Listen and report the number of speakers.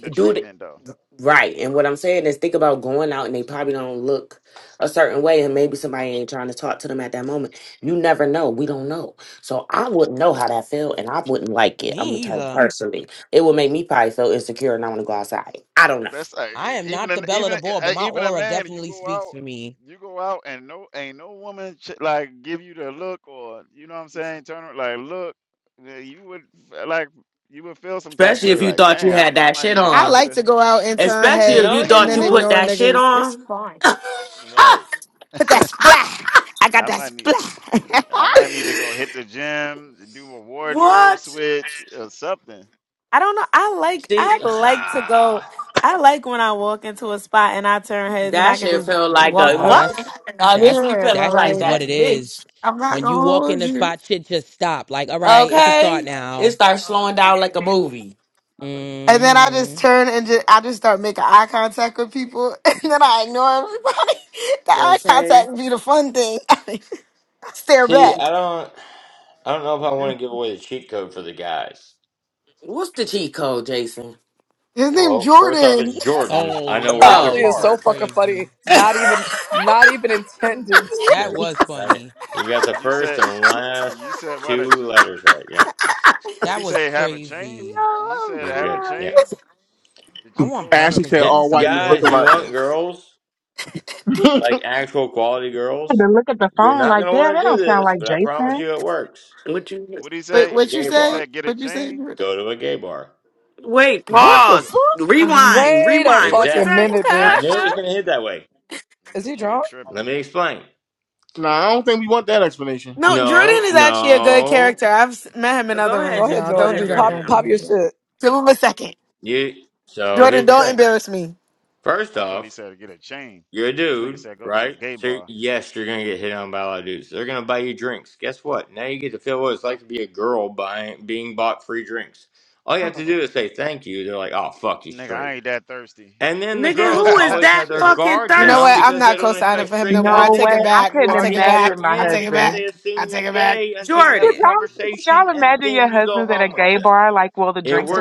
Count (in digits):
8